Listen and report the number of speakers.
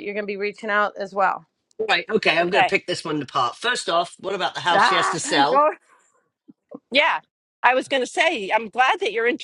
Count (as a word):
three